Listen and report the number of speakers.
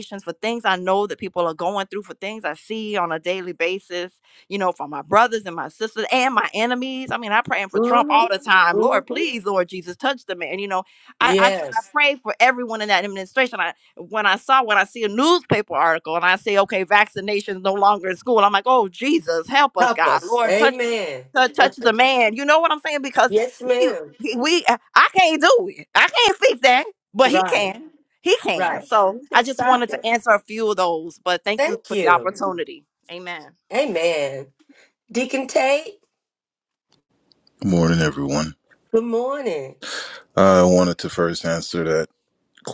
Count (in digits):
3